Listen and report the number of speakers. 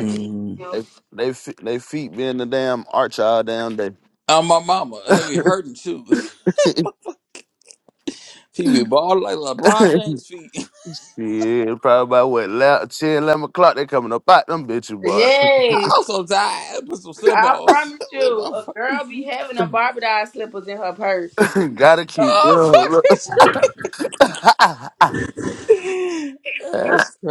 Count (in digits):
3